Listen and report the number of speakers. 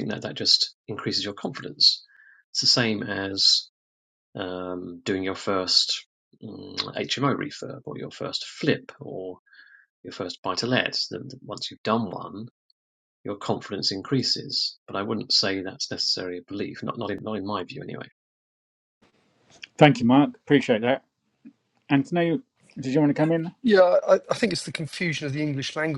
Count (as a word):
three